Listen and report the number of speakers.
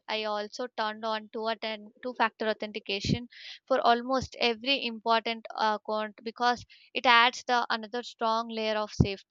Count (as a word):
one